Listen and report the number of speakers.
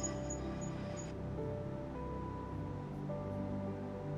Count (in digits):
0